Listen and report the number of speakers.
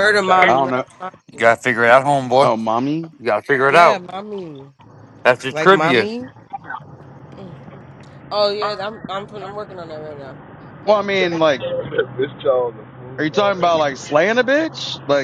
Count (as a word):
four